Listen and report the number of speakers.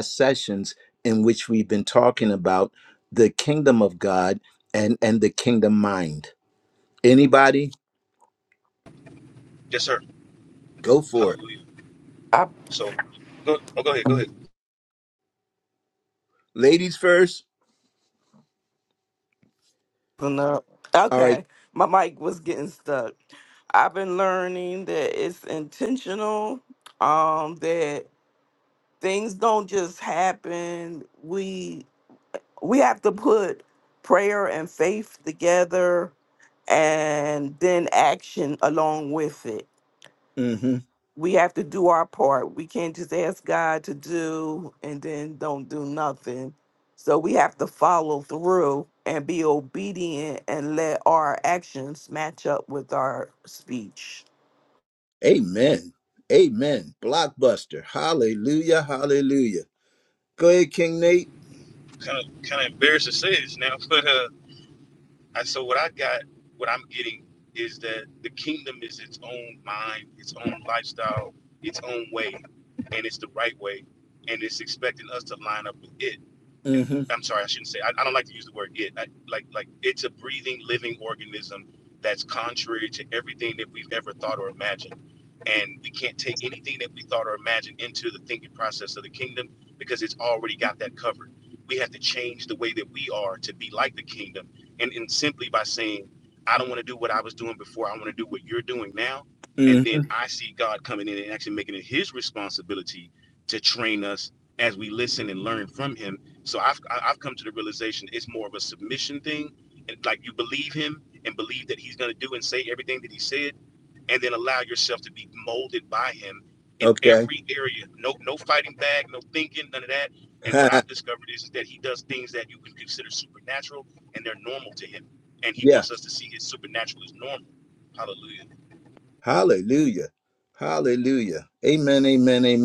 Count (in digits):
3